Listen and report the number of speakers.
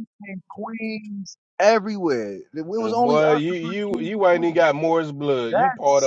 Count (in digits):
2